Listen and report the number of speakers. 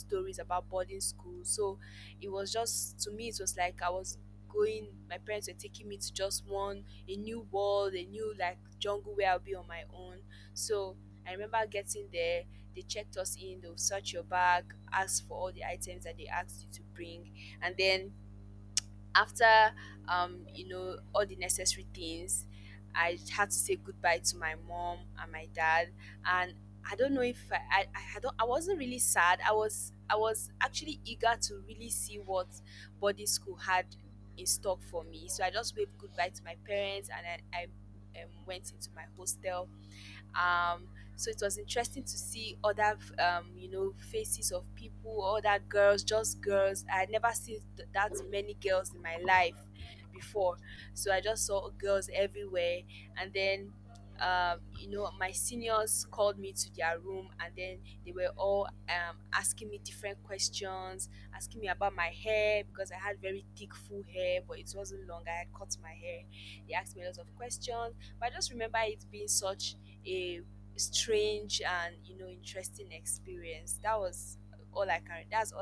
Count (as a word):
one